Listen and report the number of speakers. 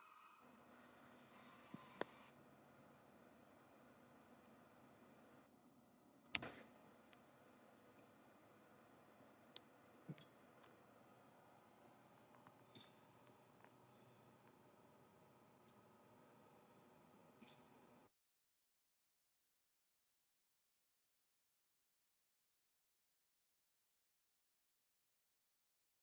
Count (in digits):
0